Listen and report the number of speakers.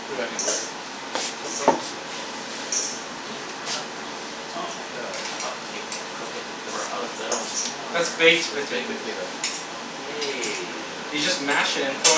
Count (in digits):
3